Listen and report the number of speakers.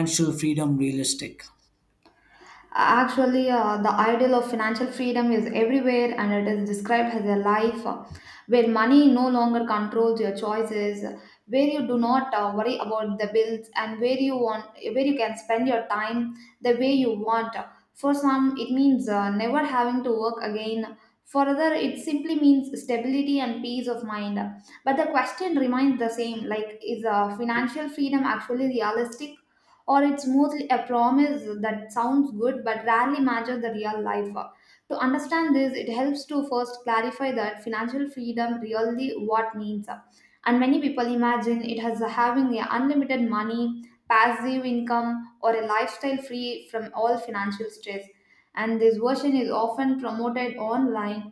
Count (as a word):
two